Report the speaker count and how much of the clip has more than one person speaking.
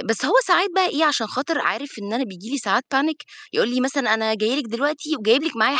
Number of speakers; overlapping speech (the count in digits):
1, no overlap